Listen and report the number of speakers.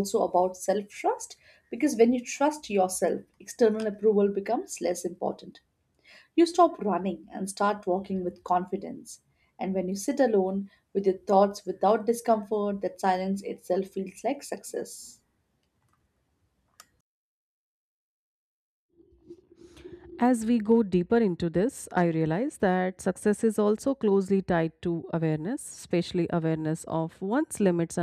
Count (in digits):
2